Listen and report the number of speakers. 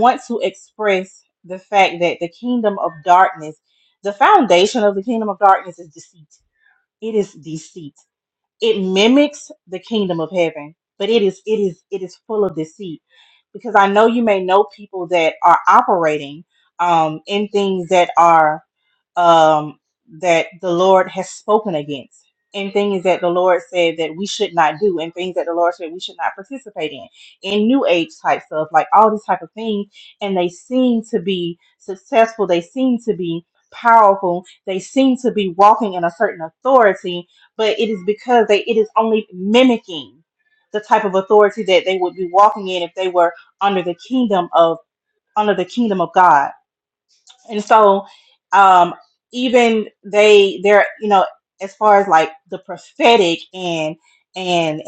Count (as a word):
one